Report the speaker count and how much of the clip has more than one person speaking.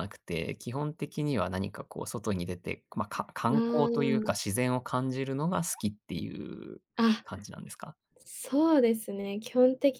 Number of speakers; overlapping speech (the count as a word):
two, about 8%